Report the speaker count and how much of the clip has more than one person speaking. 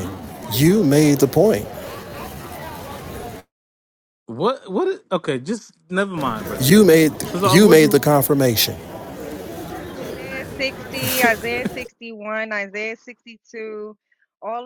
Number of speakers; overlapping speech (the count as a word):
three, about 7%